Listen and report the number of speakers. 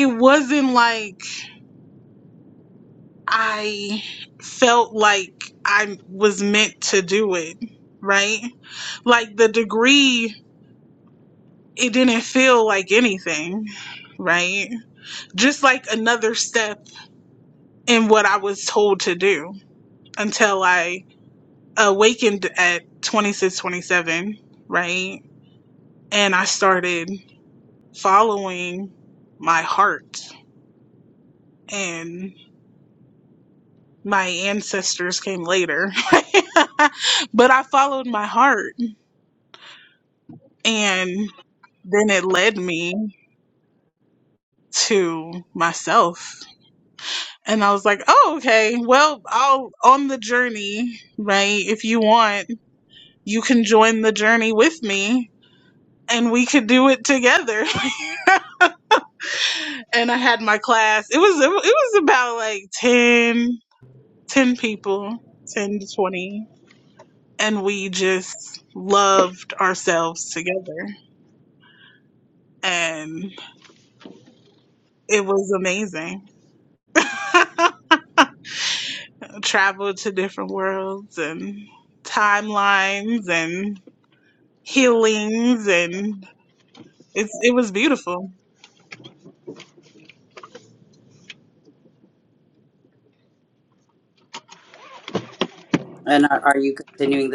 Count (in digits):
2